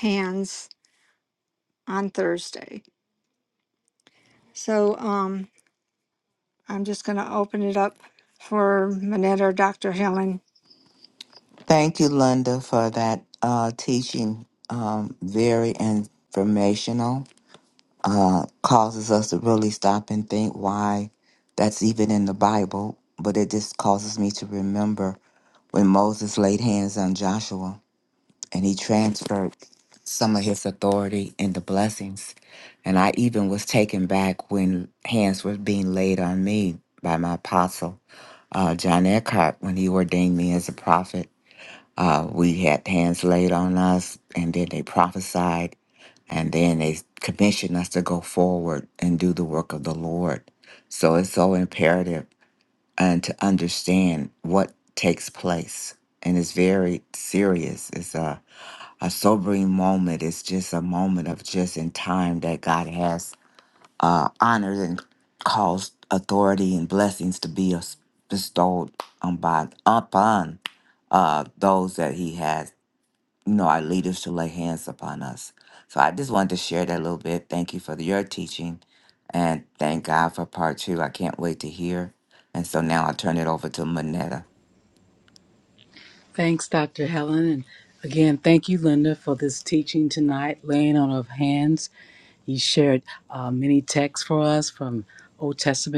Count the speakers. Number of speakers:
three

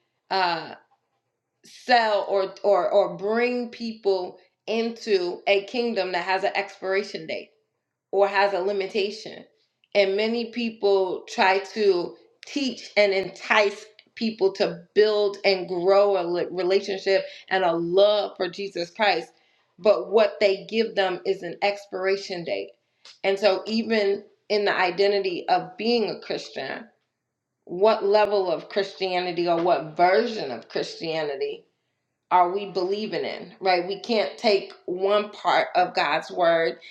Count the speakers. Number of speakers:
one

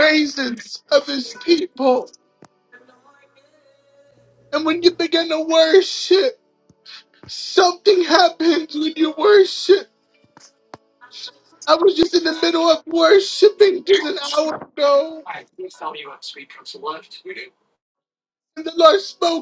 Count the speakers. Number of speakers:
two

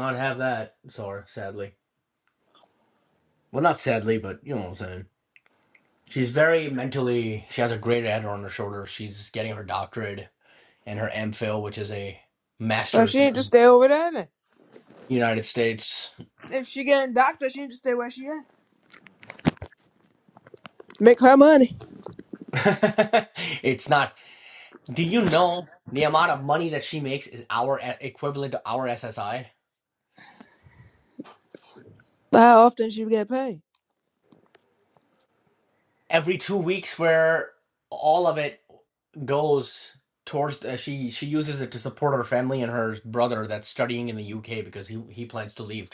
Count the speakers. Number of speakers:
two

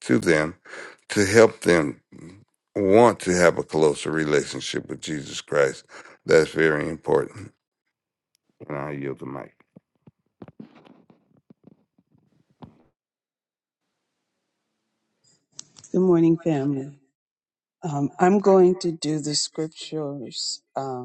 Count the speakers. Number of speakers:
two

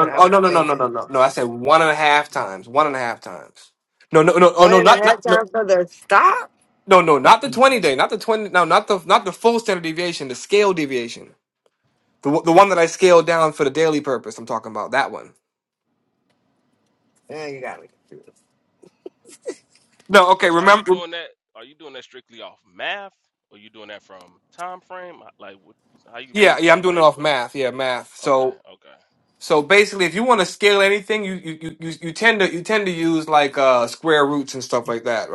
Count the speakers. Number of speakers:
three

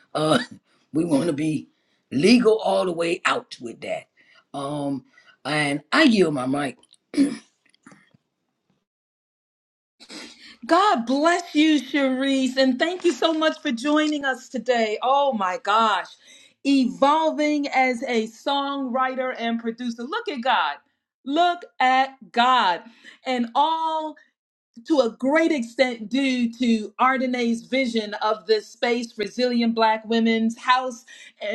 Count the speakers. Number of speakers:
two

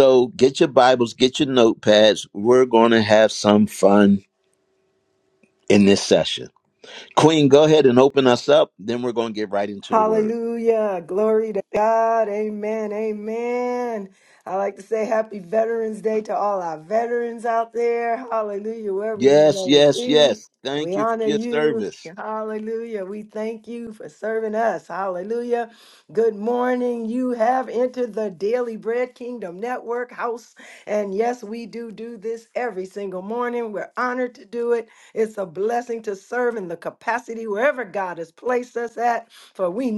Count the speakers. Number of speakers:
two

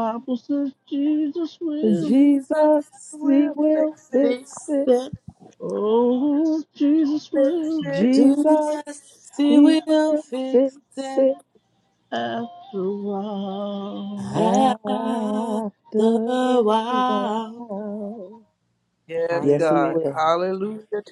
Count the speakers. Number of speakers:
four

